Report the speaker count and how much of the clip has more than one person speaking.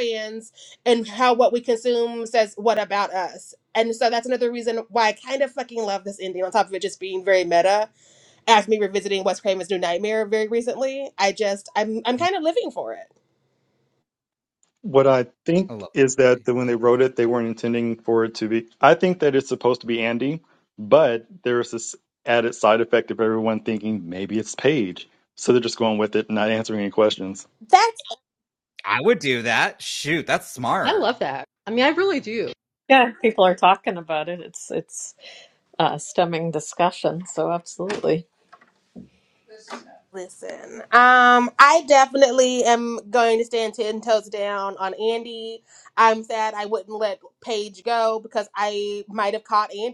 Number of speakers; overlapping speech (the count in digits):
5, about 2%